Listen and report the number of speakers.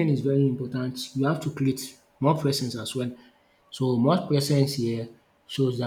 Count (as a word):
one